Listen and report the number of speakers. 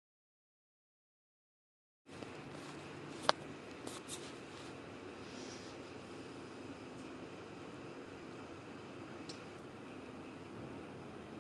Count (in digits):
0